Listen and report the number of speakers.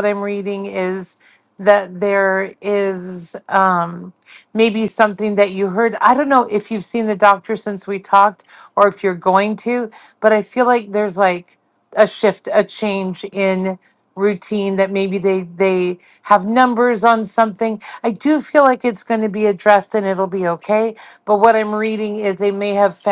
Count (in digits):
1